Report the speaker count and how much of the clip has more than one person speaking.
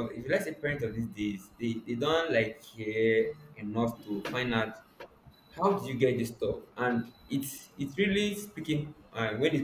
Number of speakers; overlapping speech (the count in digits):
1, no overlap